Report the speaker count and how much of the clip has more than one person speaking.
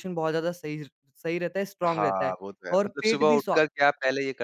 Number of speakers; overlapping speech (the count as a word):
two, about 31%